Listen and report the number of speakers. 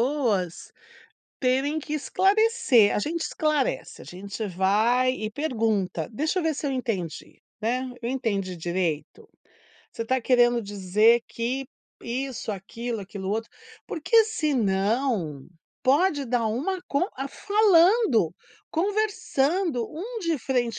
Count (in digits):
1